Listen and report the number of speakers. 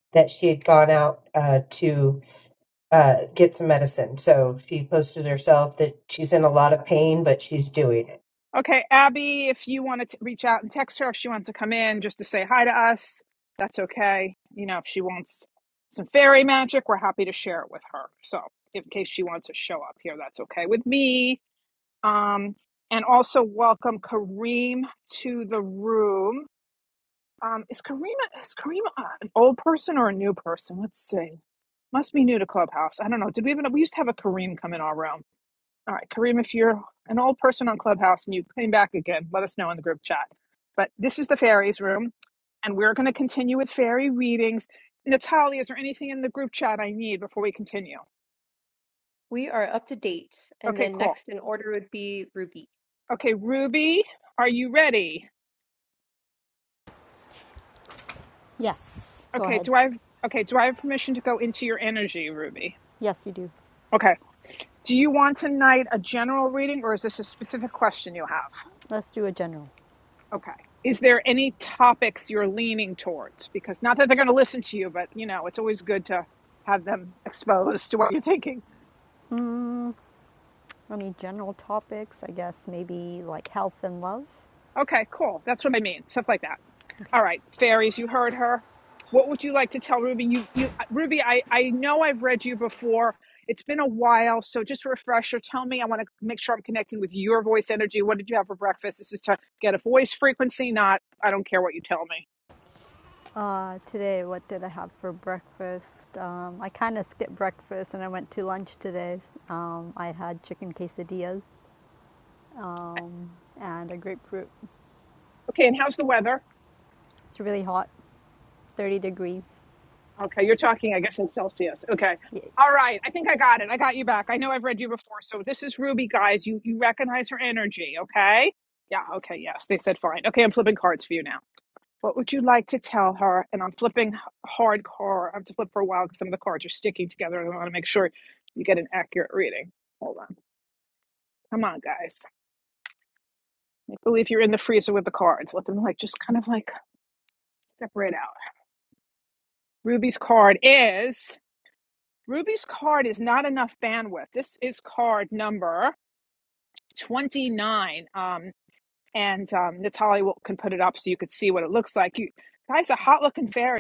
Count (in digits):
4